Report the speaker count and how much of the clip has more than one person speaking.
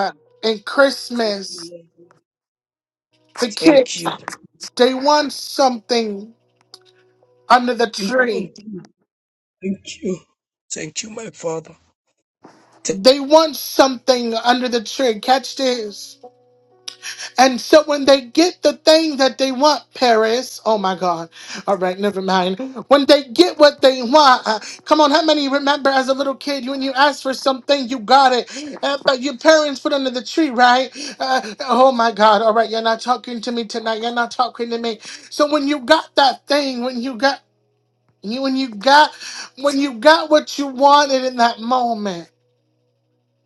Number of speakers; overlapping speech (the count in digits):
2, about 3%